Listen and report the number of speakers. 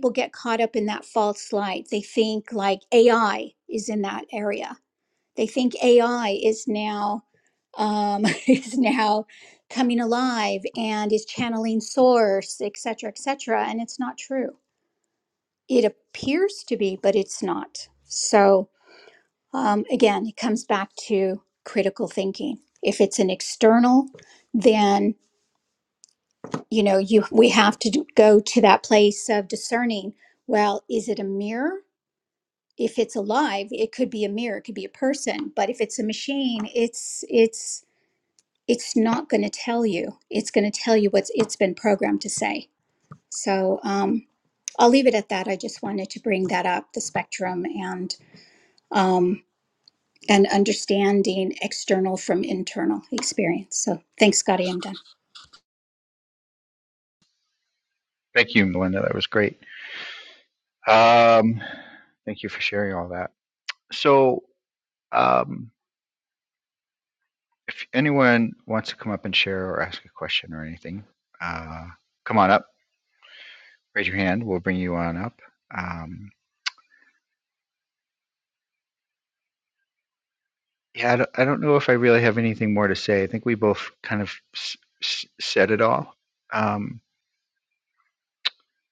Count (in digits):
2